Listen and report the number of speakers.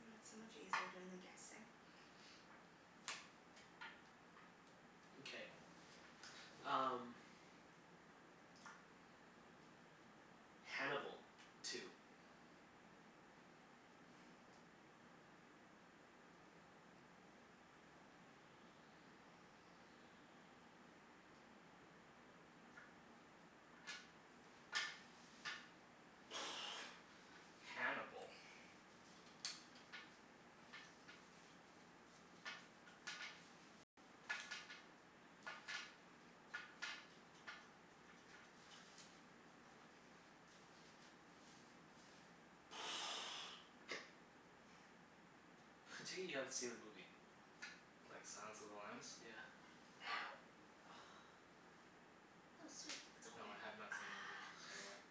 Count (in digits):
3